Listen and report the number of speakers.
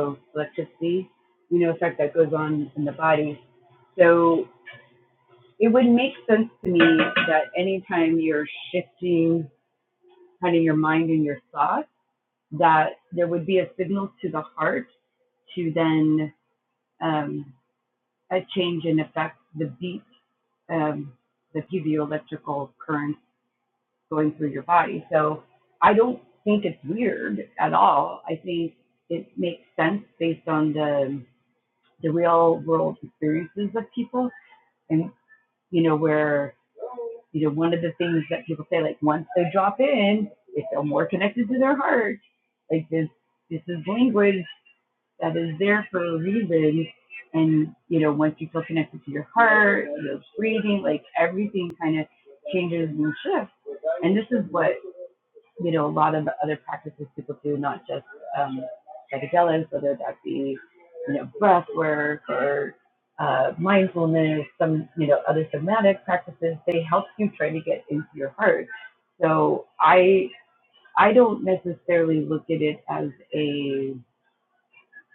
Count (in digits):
1